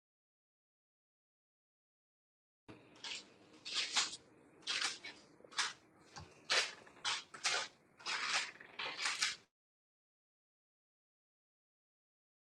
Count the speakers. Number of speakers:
0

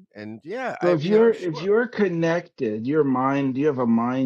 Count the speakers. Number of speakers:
2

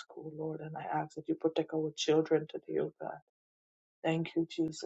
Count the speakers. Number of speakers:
1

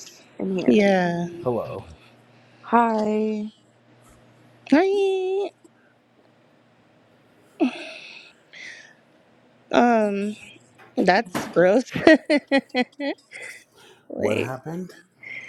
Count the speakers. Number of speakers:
3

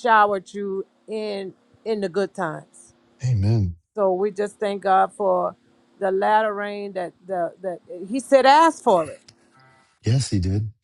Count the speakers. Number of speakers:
2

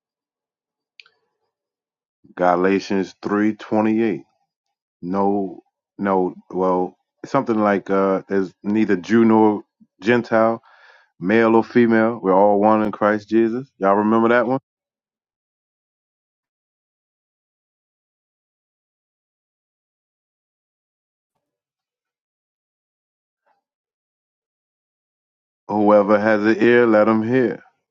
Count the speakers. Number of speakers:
1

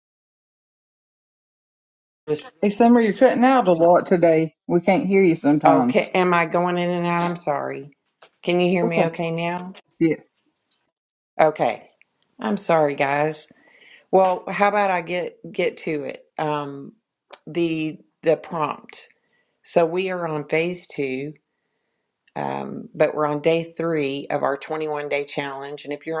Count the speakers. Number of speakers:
2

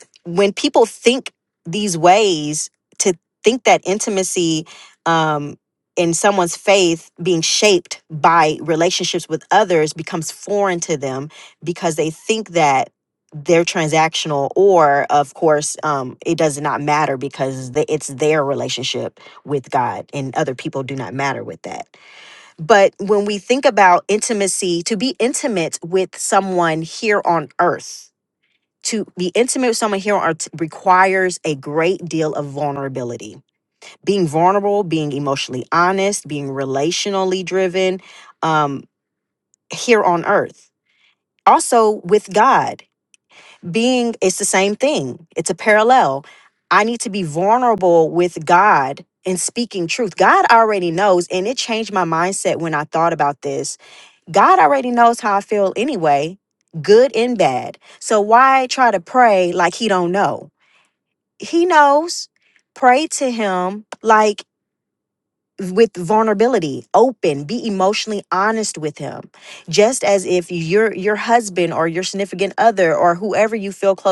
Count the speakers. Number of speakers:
1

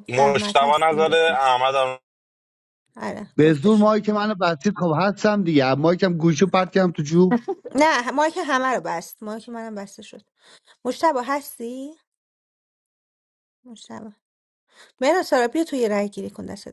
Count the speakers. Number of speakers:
3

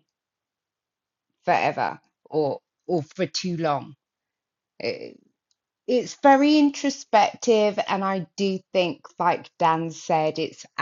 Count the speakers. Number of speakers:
1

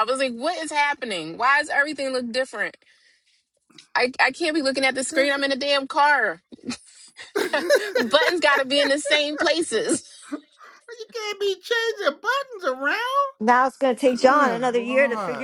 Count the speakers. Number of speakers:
3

